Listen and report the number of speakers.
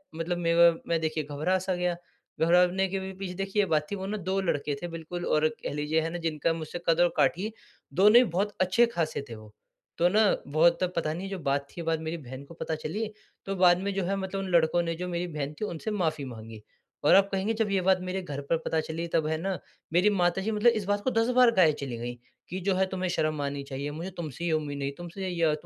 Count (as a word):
one